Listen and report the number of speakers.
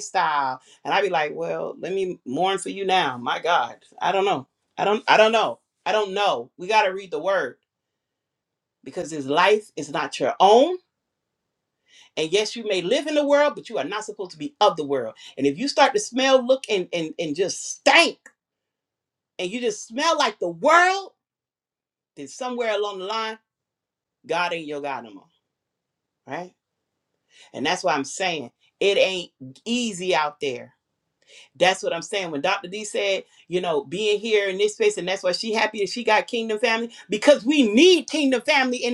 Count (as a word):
one